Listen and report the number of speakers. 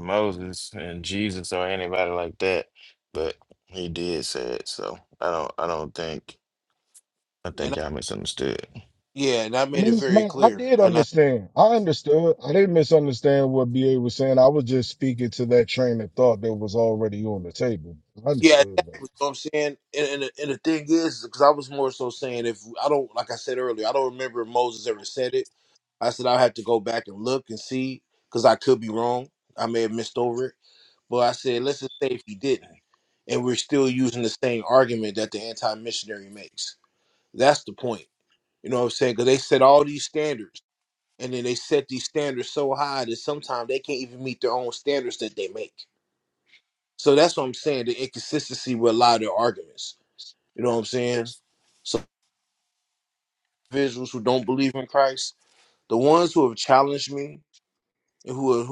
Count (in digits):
3